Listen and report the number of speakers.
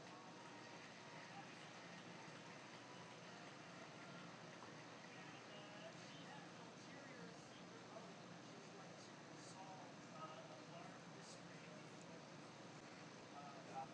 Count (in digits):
0